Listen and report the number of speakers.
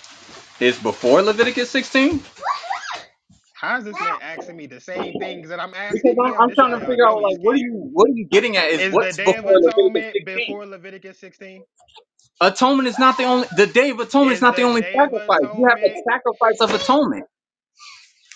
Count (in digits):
2